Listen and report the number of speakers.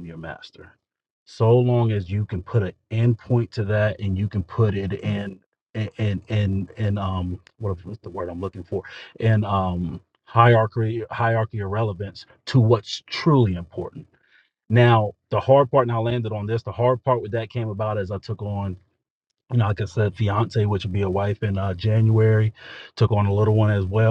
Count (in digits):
1